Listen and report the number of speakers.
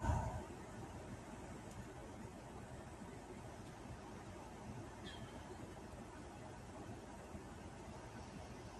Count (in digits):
0